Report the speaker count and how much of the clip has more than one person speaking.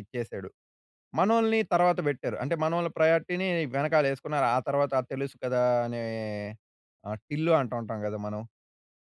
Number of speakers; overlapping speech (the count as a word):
one, no overlap